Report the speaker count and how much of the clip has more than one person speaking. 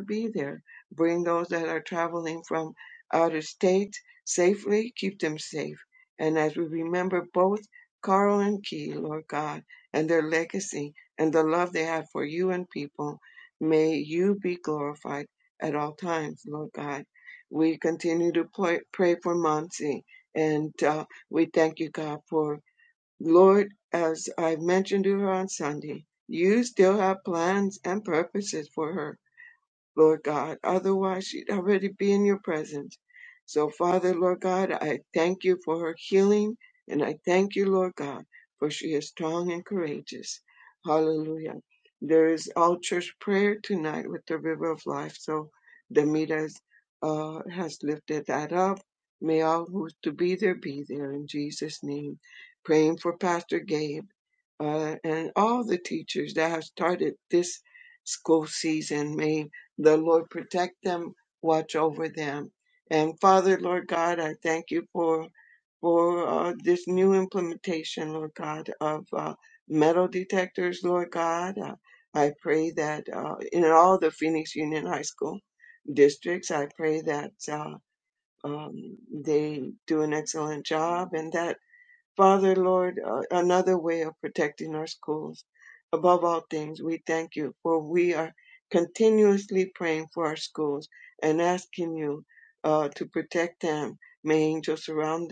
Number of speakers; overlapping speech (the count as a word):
one, no overlap